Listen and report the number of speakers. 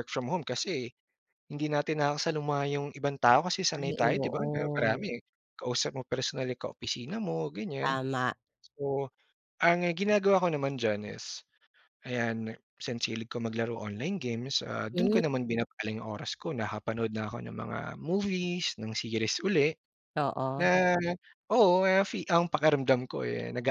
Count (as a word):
two